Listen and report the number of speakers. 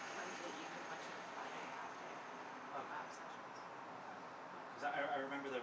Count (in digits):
2